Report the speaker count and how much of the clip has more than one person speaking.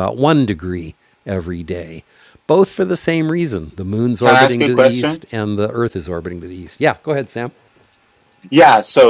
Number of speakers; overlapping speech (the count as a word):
two, about 11%